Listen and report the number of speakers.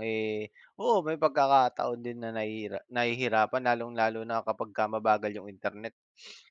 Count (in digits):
1